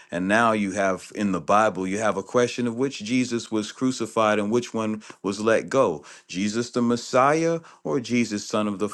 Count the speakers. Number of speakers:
1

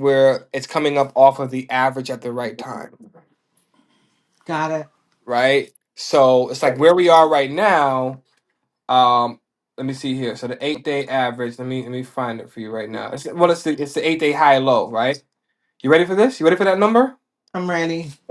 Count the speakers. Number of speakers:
2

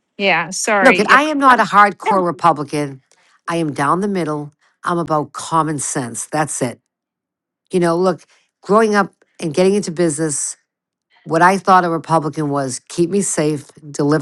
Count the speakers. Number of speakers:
2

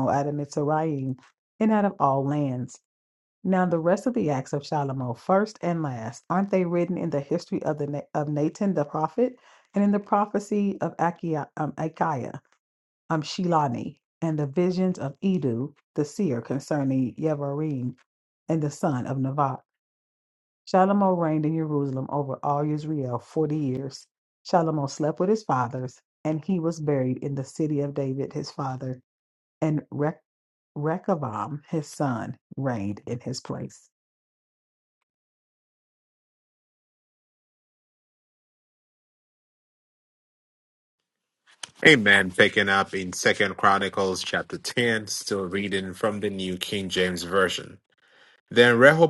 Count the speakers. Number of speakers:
2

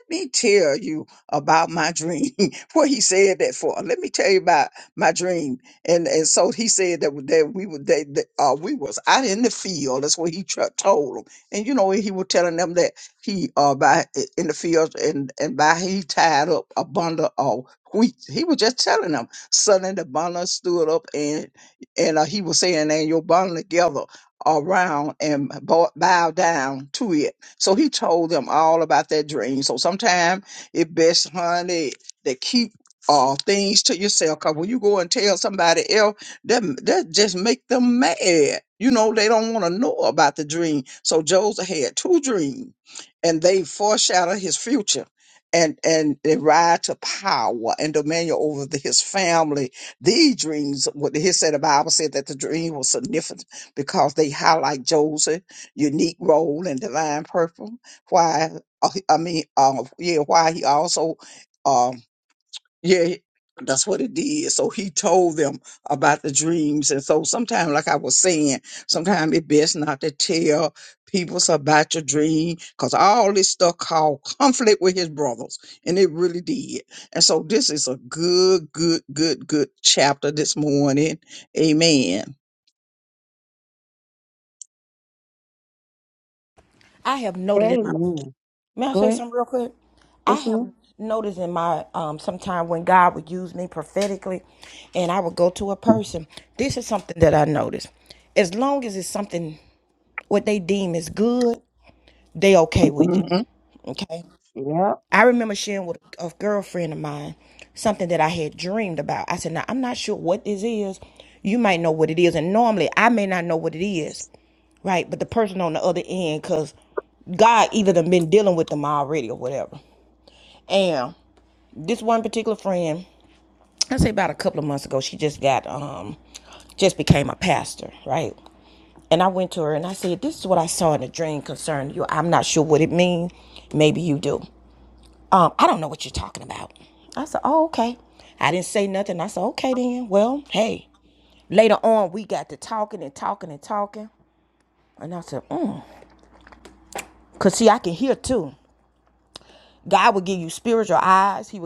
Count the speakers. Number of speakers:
3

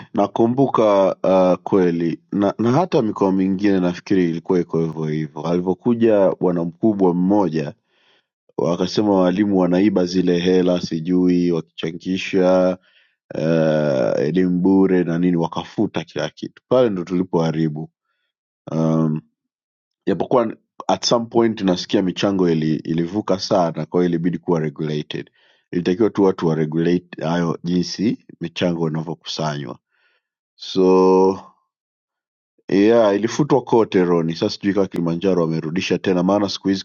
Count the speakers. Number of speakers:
1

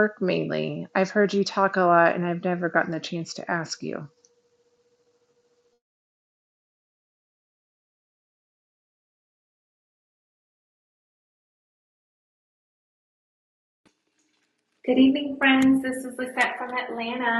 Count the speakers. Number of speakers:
2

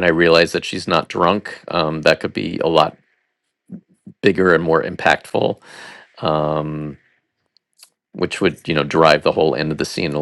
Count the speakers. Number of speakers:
1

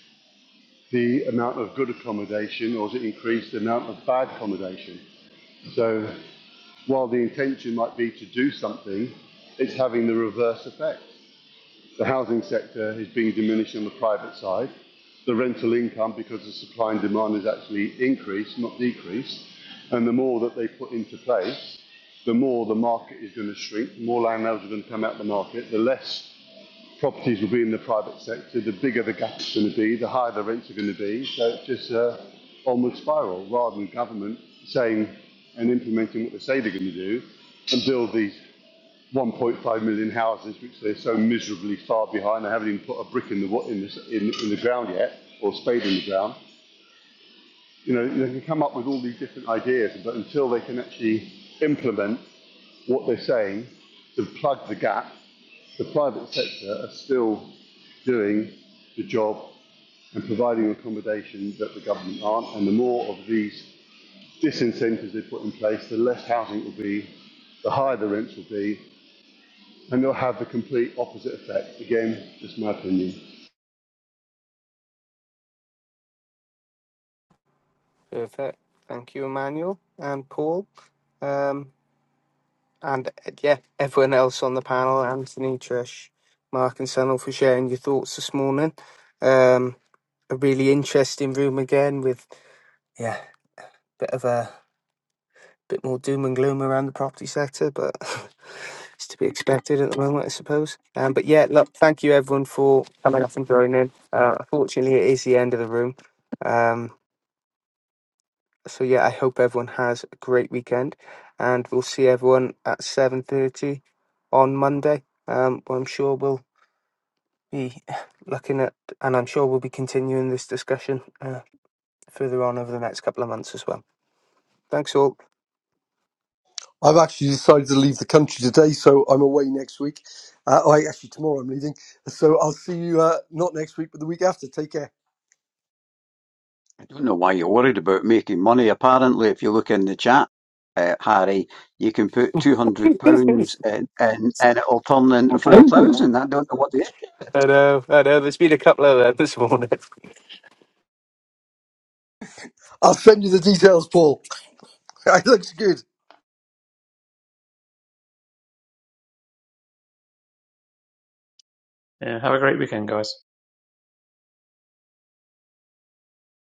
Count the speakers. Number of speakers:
5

